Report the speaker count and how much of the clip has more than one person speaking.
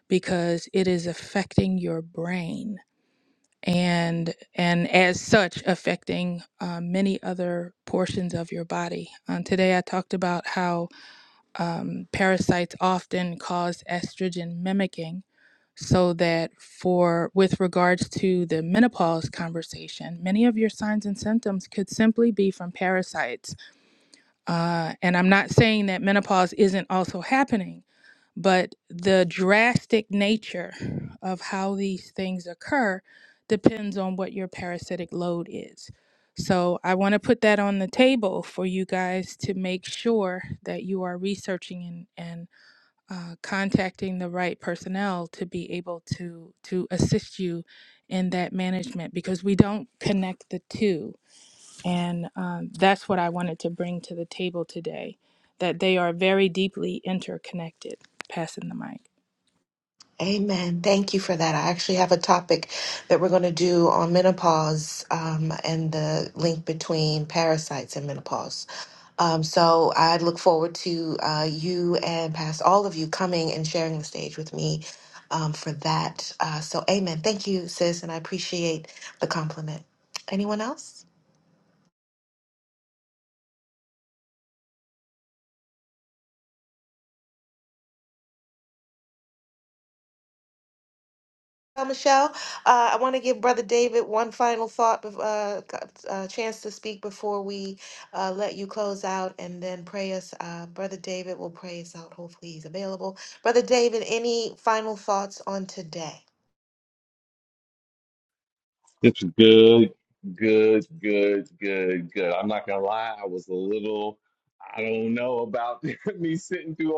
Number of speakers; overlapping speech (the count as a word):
three, no overlap